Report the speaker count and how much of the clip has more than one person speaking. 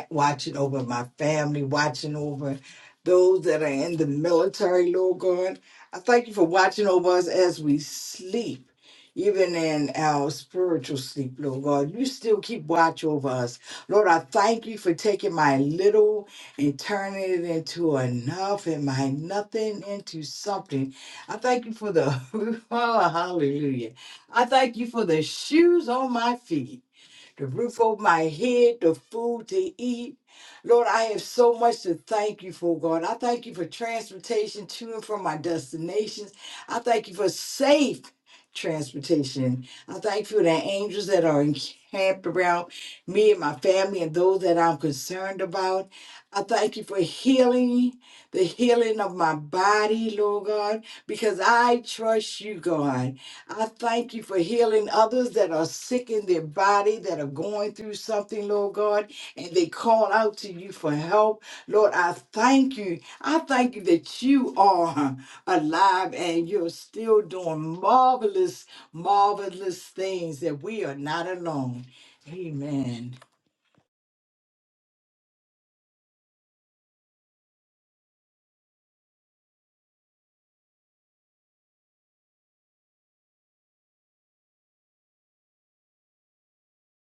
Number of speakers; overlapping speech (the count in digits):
1, no overlap